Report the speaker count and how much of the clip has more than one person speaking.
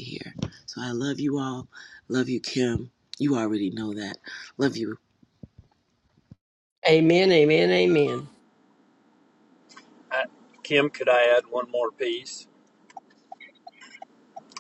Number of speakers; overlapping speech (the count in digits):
3, no overlap